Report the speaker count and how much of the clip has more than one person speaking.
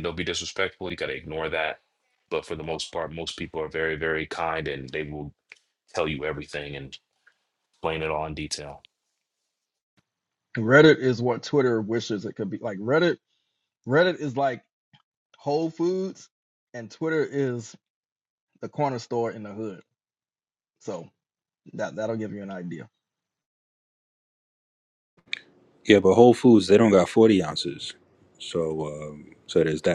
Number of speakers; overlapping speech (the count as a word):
three, no overlap